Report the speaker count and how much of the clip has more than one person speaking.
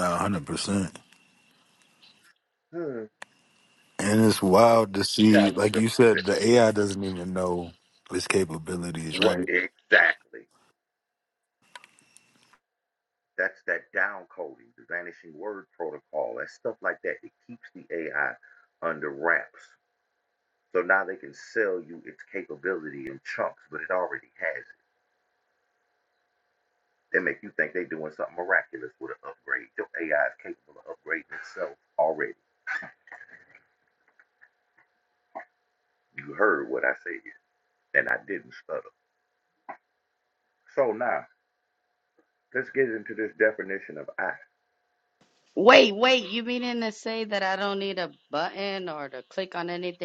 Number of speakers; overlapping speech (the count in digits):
3, about 1%